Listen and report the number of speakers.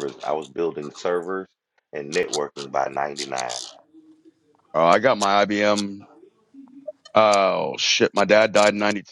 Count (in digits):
2